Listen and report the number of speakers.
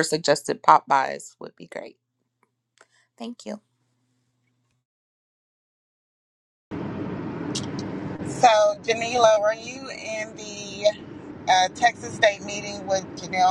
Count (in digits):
2